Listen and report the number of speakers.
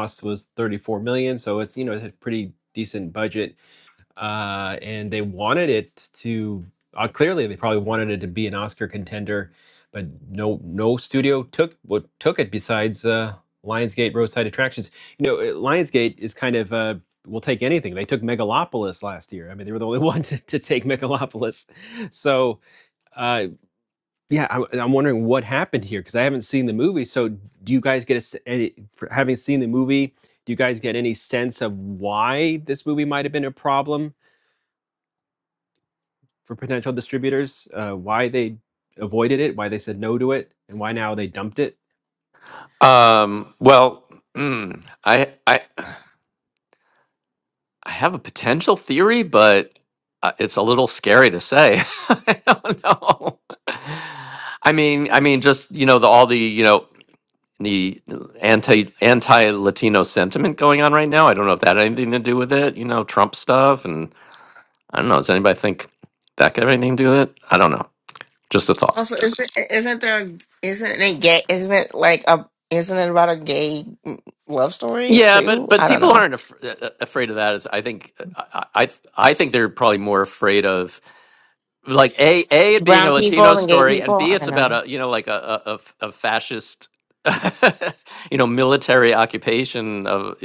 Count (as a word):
three